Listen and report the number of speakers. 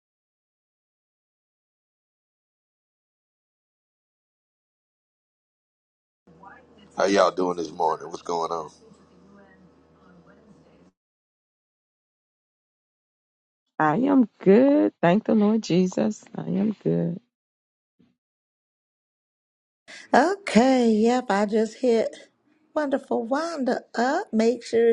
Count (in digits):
3